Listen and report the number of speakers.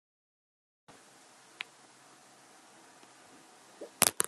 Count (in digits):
0